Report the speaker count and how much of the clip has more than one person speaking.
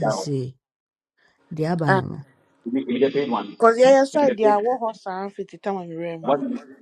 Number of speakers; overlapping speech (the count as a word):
three, about 13%